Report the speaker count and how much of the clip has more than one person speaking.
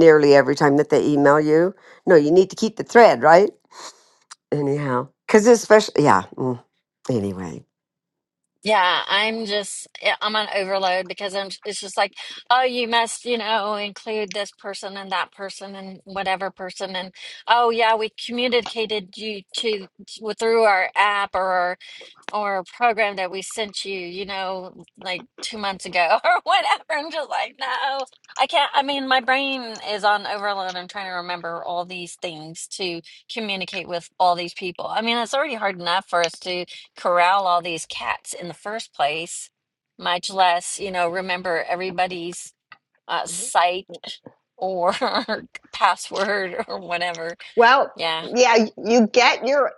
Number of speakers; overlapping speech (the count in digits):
3, no overlap